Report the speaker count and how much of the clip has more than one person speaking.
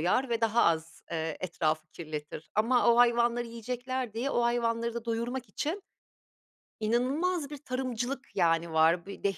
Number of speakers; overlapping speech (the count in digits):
1, no overlap